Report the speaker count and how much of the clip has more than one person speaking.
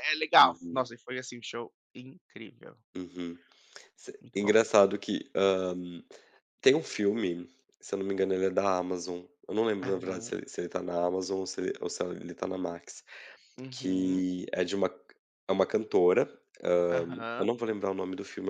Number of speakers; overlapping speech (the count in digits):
2, about 12%